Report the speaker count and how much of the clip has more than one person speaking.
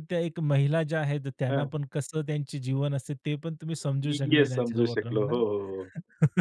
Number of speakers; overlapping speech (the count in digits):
2, about 20%